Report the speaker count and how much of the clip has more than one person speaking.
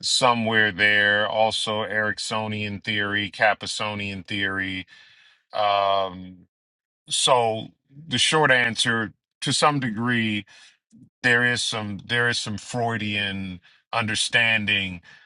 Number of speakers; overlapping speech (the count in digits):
1, no overlap